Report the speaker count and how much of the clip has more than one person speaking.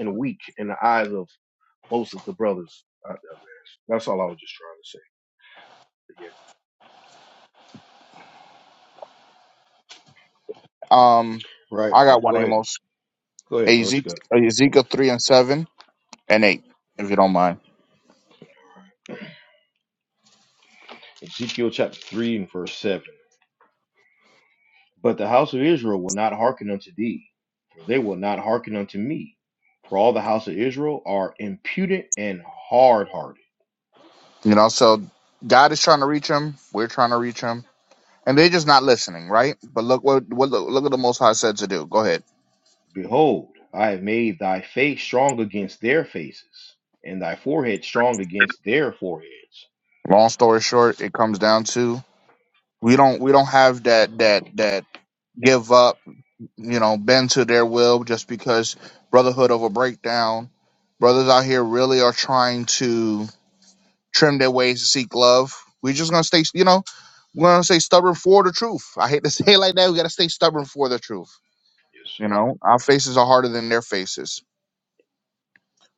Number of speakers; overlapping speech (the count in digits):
3, about 2%